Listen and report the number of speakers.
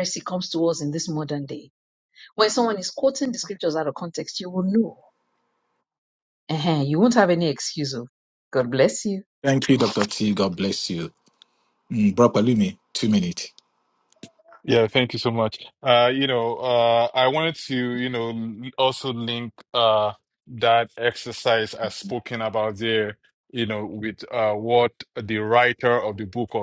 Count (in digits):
3